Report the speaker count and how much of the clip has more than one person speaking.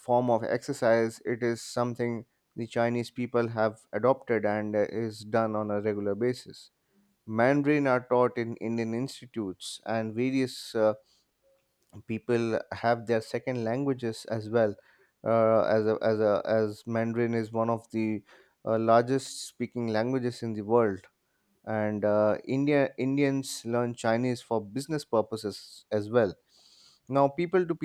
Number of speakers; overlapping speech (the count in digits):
1, no overlap